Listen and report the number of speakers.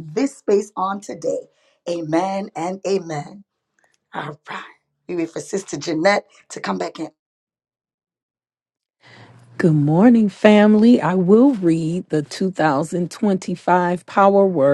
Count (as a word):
two